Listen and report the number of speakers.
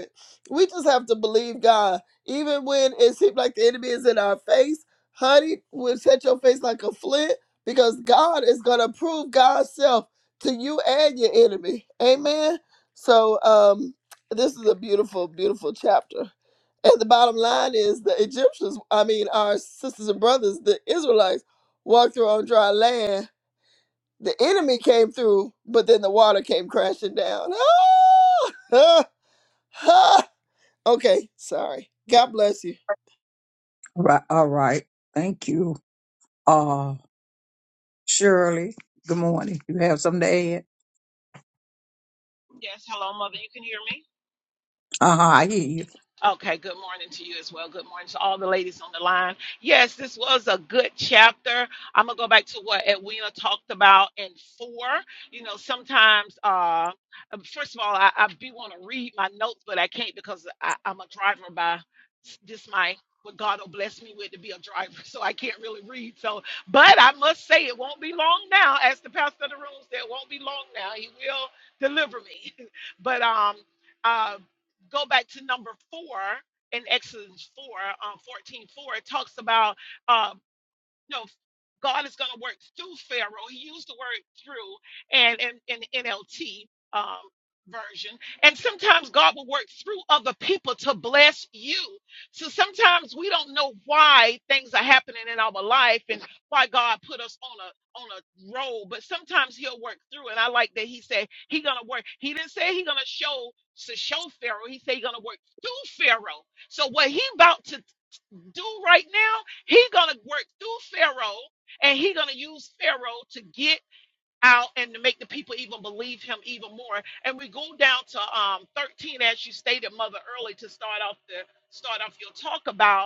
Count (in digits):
3